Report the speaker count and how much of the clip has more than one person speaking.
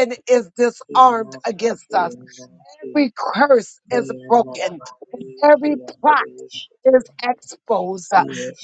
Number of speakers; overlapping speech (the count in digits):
2, about 32%